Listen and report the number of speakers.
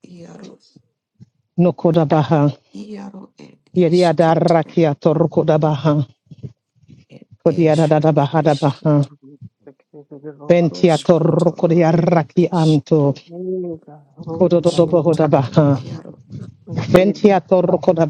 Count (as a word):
three